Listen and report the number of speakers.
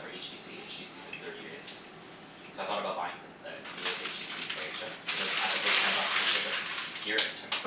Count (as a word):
one